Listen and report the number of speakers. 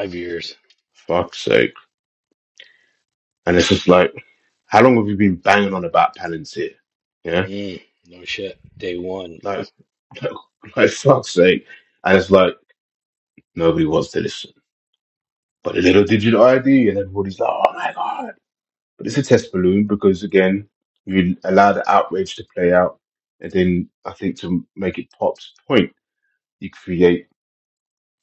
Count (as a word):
two